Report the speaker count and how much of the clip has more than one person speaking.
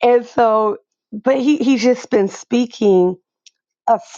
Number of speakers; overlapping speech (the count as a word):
one, no overlap